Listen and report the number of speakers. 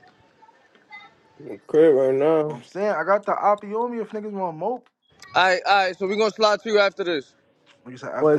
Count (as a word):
three